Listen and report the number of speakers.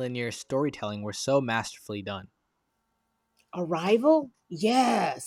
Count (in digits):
2